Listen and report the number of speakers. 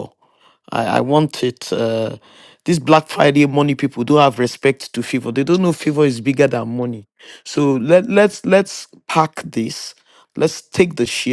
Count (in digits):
1